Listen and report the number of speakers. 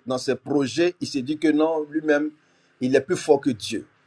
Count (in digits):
1